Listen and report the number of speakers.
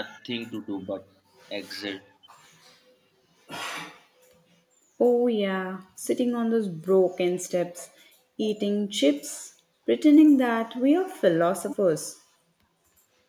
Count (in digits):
2